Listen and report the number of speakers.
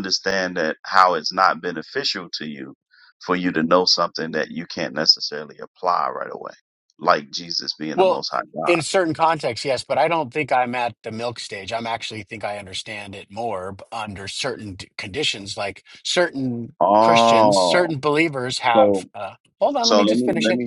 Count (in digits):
2